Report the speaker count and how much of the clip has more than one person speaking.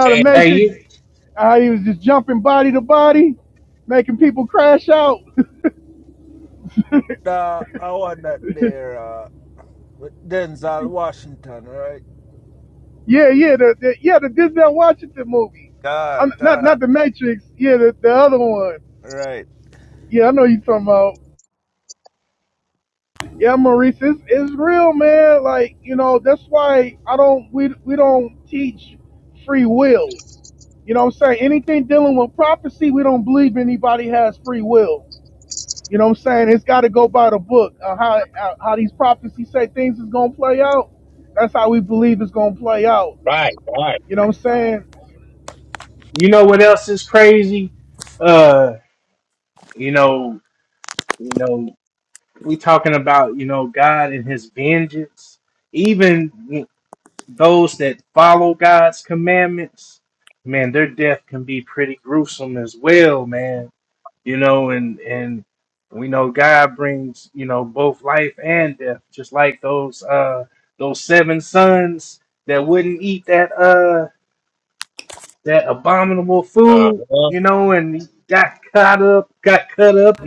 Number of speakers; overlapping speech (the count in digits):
4, about 2%